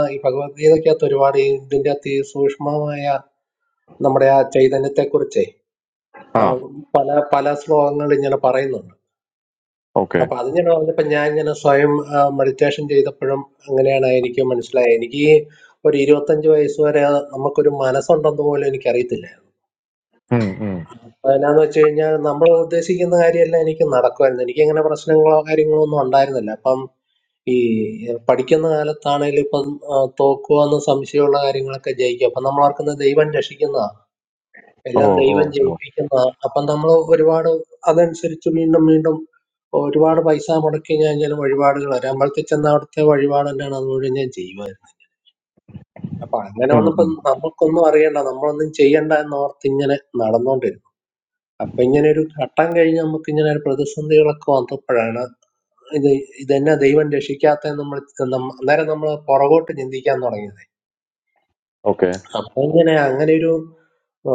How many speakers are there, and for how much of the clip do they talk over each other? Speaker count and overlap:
two, about 2%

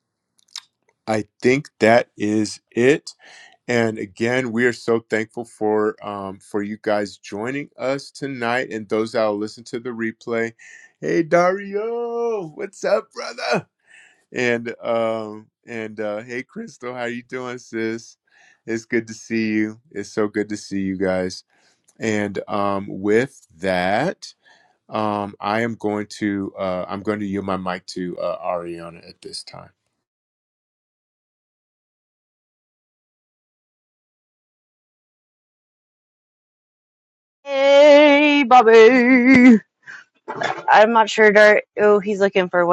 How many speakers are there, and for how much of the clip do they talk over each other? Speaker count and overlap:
two, no overlap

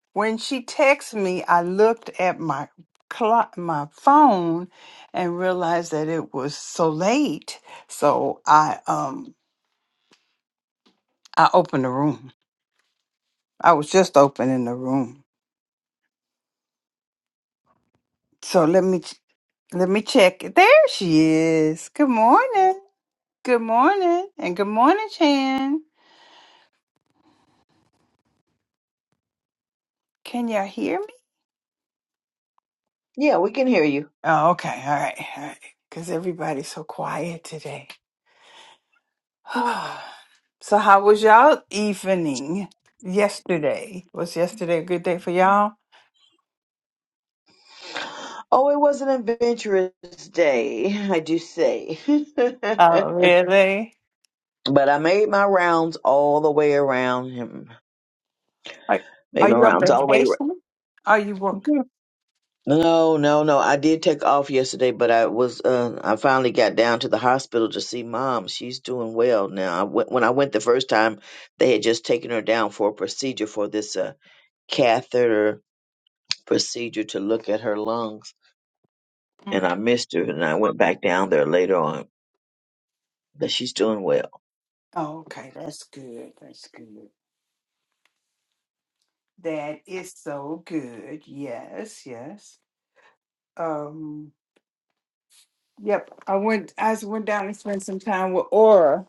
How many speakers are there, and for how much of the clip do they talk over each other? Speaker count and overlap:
two, about 2%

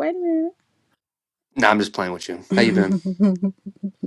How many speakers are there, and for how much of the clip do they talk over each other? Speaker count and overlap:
two, about 10%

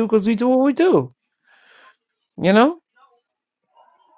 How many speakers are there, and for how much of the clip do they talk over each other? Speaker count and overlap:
one, no overlap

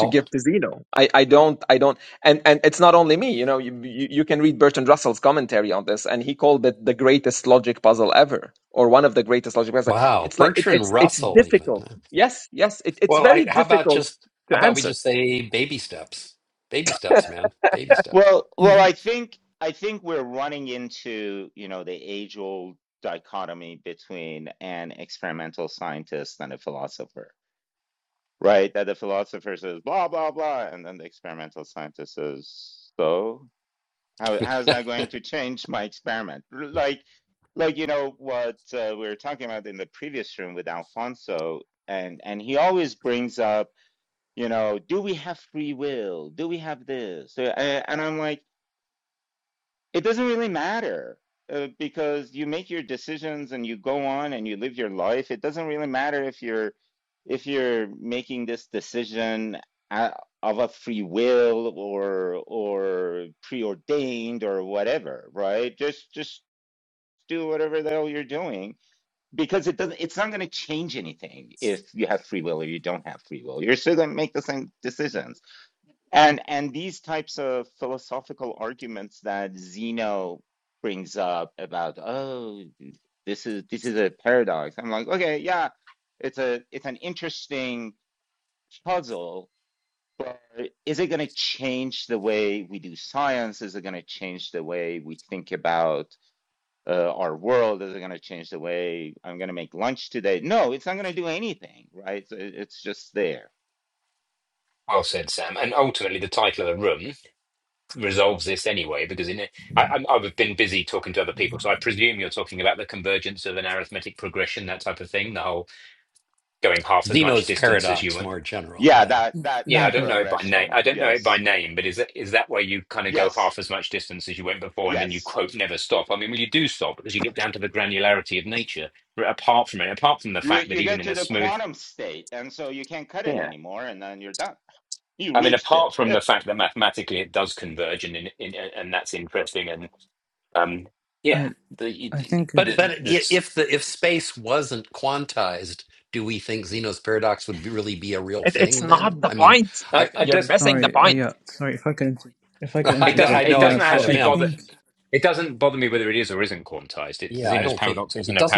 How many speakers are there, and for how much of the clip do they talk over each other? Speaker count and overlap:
five, about 10%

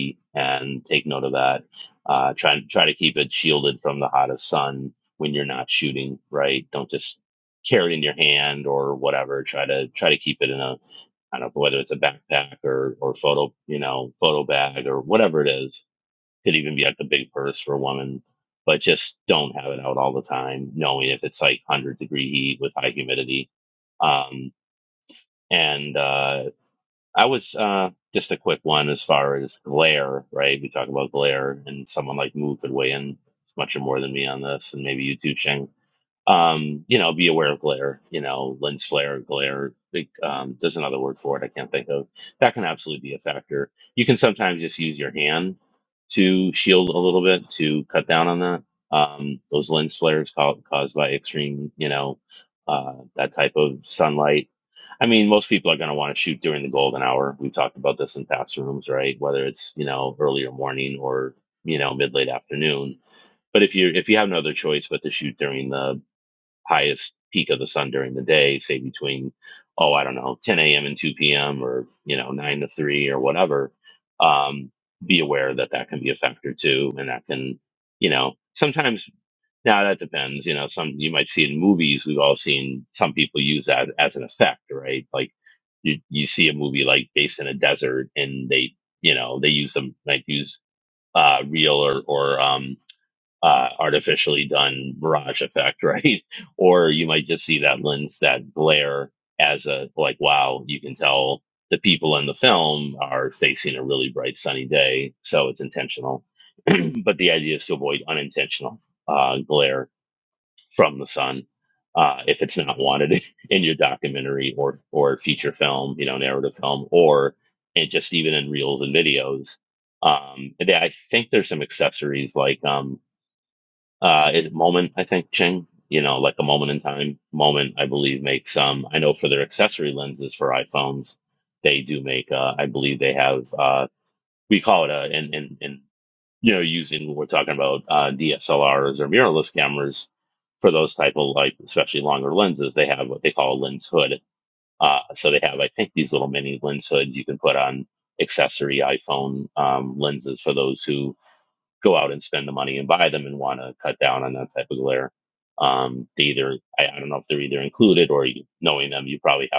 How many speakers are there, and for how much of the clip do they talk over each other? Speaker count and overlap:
one, no overlap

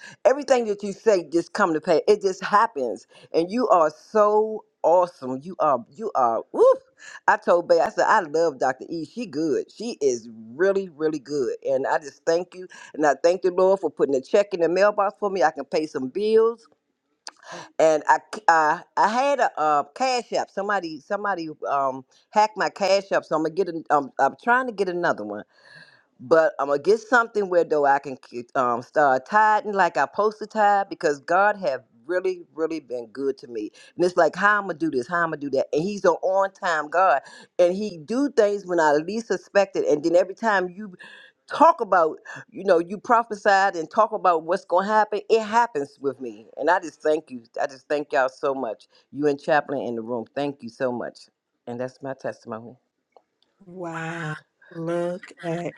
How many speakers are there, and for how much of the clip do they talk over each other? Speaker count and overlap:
two, no overlap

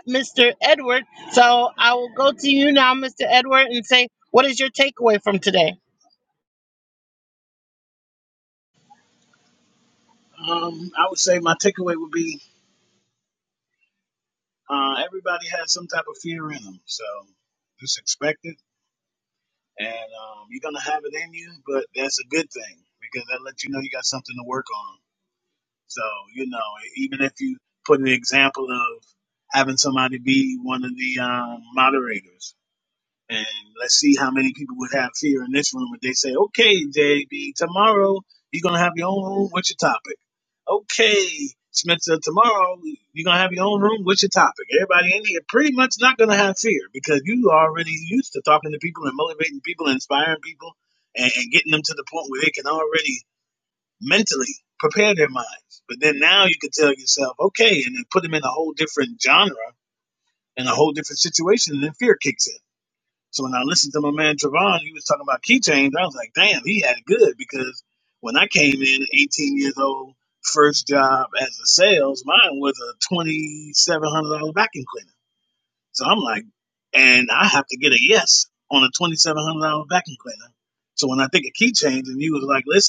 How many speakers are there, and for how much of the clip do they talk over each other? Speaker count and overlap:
two, no overlap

